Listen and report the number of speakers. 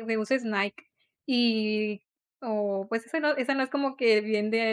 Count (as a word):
one